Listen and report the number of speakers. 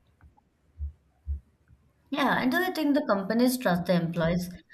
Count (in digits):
1